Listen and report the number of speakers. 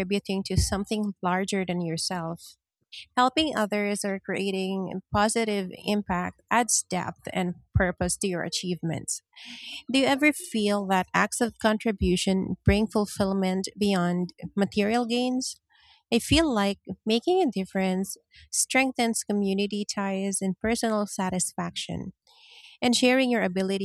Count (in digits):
1